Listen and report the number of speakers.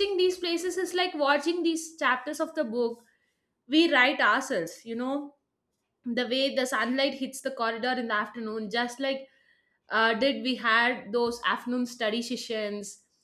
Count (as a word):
one